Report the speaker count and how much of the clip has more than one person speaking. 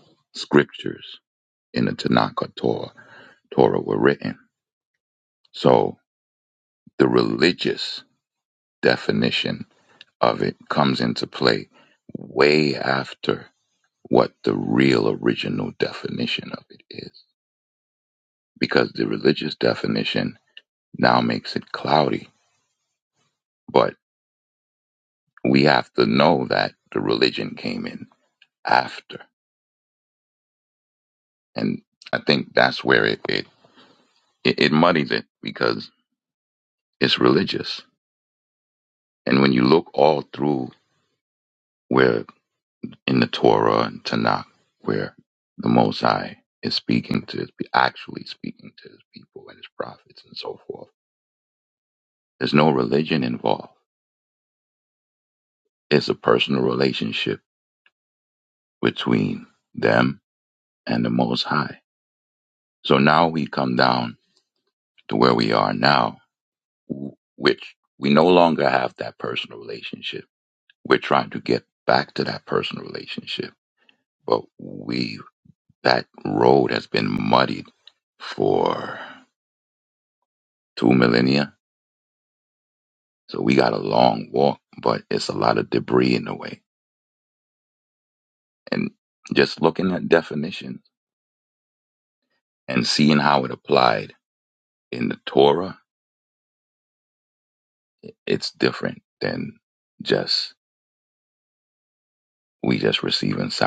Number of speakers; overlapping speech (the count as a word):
one, no overlap